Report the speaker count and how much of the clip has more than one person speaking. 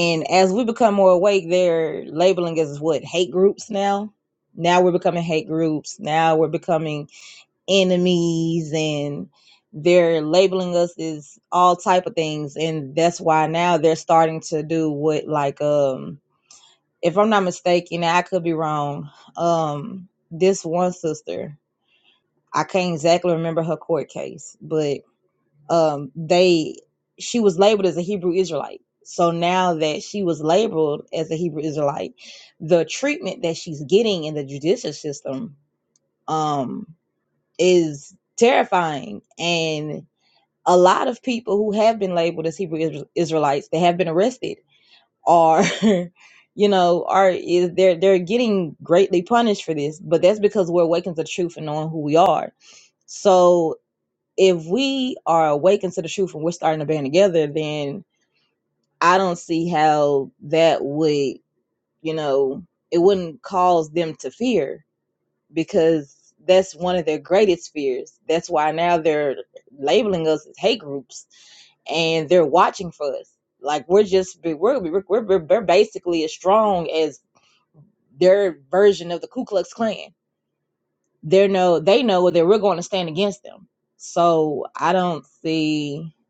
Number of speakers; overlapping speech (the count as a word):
one, no overlap